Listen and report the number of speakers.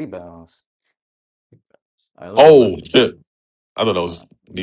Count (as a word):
two